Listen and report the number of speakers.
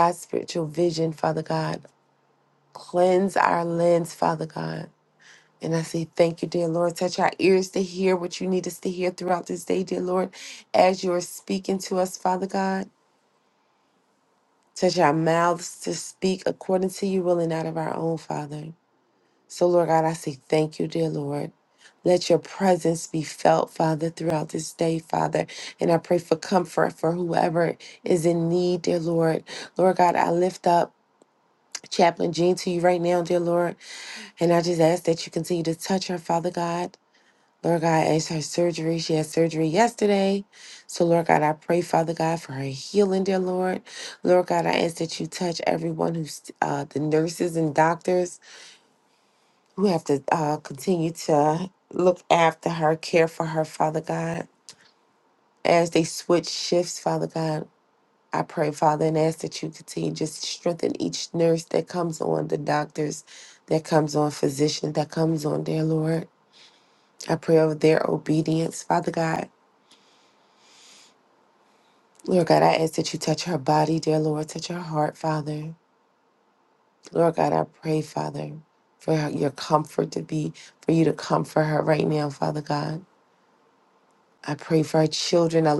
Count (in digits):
1